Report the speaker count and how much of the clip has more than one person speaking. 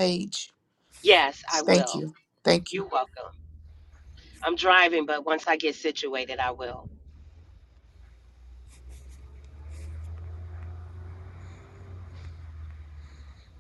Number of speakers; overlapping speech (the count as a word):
two, about 3%